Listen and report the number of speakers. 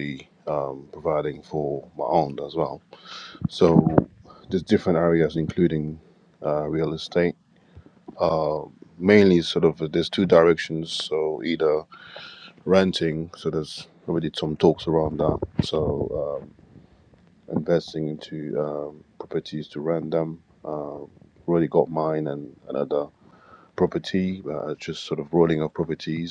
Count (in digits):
1